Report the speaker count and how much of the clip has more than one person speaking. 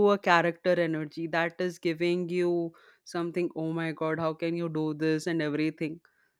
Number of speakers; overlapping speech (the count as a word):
one, no overlap